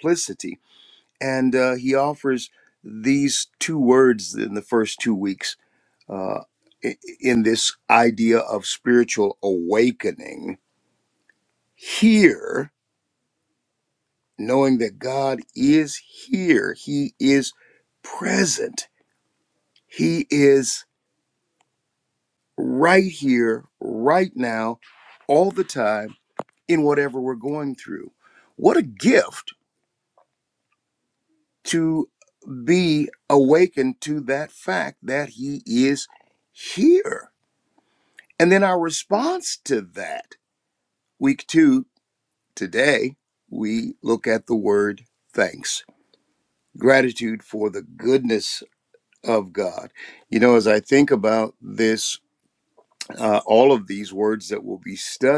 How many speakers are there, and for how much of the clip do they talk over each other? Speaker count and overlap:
1, no overlap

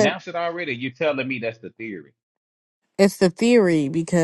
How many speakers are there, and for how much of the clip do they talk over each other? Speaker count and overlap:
2, about 3%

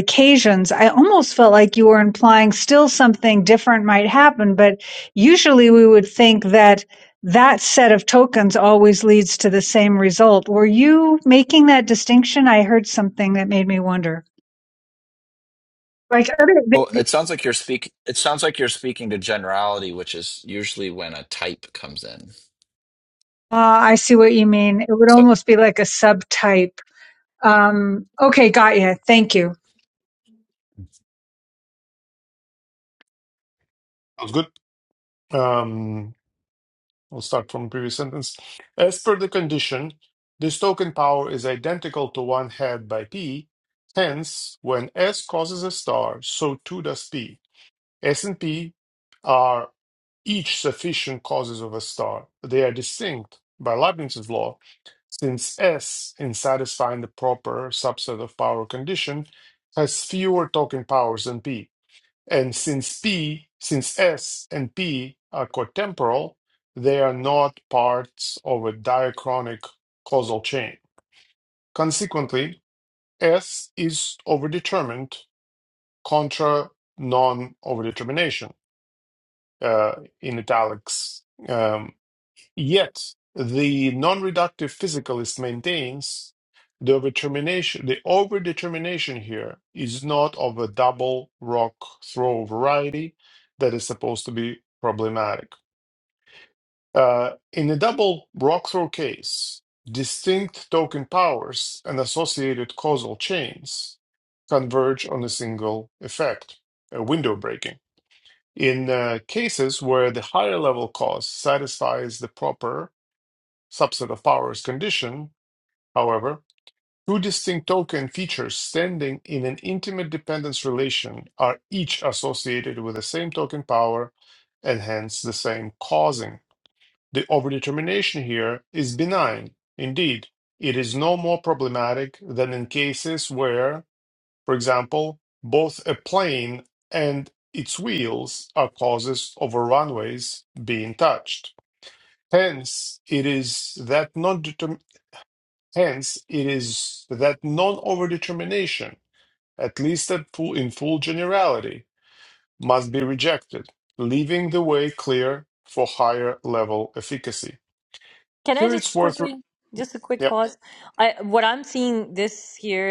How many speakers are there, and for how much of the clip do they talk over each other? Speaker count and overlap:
4, about 1%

